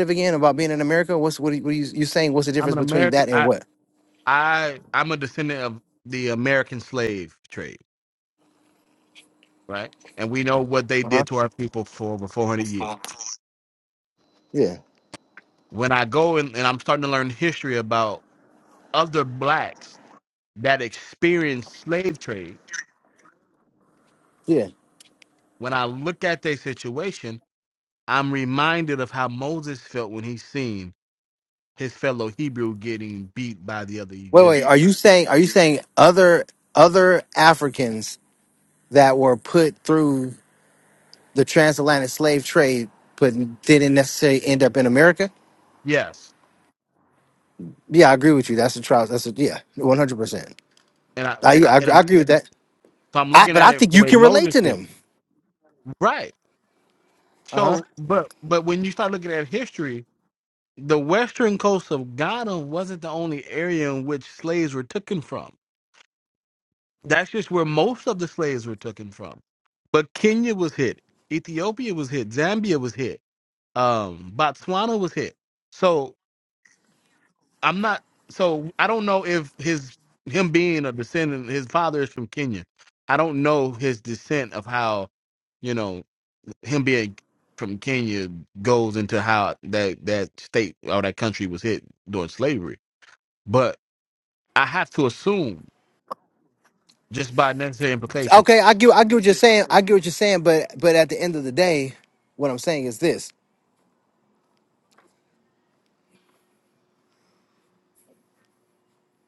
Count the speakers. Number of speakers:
2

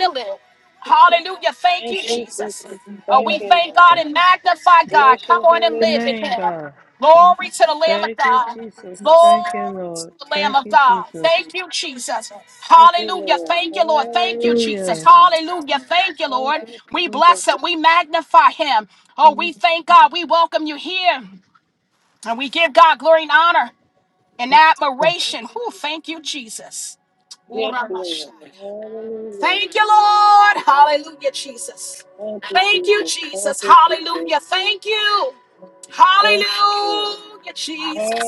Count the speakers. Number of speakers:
2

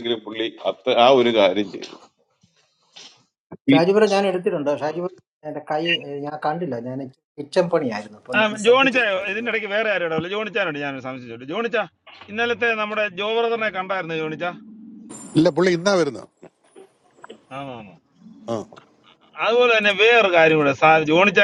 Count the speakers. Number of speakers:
4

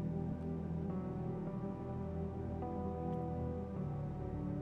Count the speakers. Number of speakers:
0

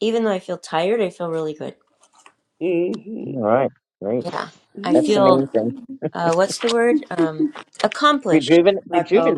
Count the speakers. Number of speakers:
3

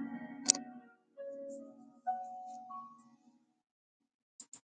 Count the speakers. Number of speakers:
0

